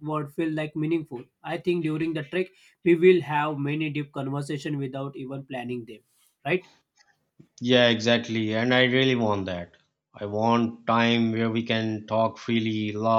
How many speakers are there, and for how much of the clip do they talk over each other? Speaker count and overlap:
two, no overlap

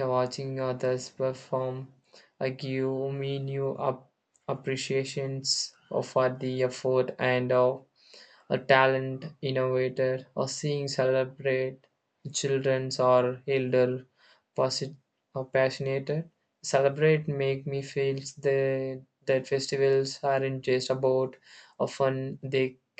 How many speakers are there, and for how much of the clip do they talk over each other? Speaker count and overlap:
one, no overlap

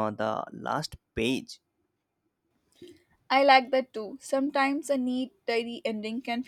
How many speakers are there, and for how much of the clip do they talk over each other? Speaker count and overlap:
two, no overlap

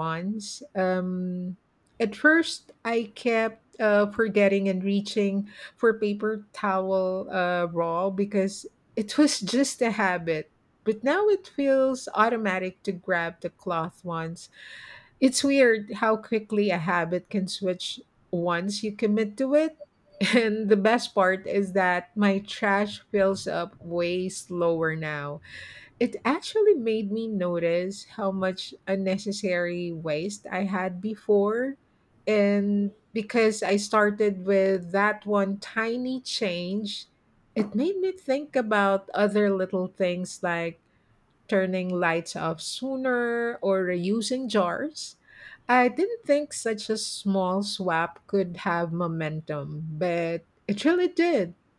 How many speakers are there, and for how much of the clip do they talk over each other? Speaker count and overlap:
one, no overlap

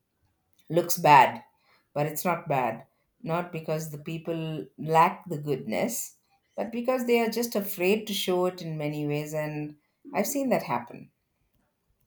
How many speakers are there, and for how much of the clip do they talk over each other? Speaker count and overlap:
one, no overlap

